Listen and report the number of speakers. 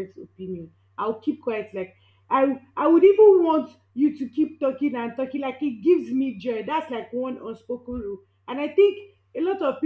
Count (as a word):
one